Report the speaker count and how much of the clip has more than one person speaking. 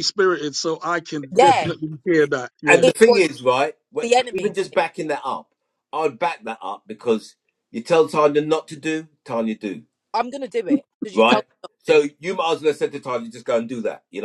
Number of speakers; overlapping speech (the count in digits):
3, about 15%